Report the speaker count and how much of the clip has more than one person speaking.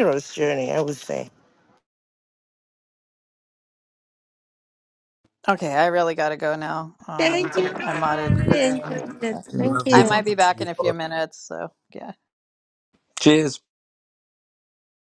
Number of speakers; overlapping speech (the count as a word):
three, about 21%